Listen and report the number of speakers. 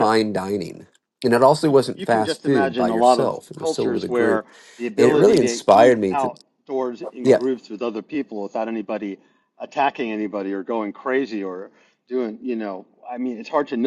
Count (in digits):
2